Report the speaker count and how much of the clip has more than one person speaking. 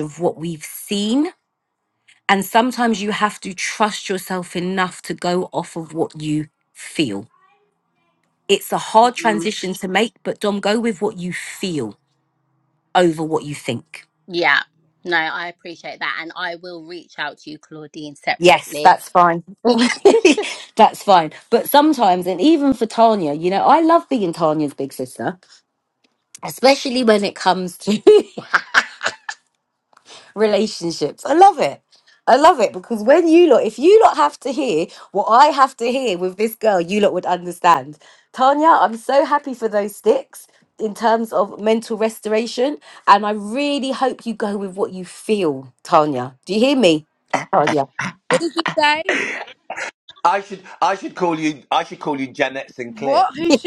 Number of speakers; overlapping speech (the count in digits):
4, about 2%